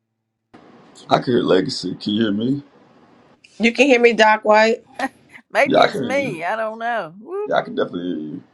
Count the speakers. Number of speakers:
three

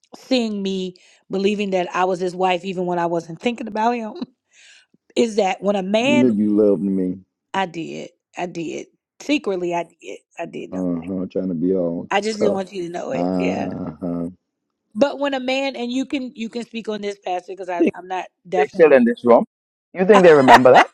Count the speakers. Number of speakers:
three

